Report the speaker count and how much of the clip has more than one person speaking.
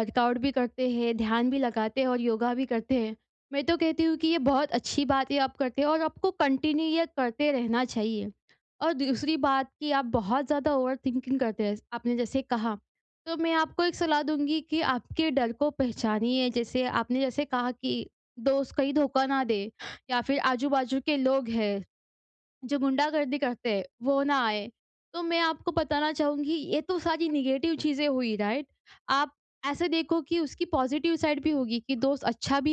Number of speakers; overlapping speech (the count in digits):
1, no overlap